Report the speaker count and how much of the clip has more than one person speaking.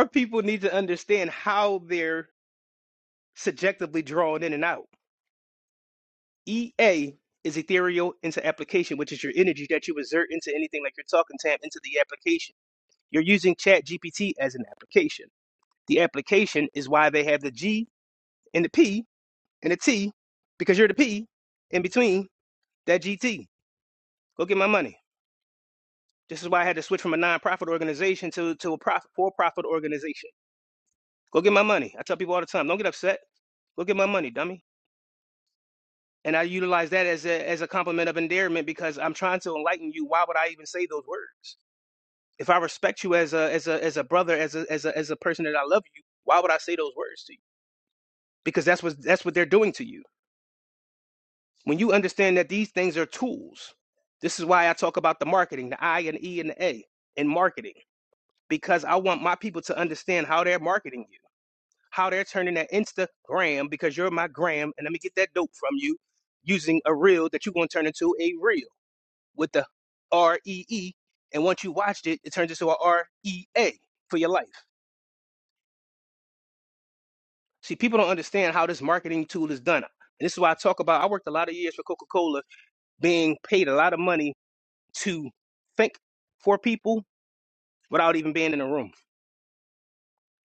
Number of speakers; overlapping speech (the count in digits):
1, no overlap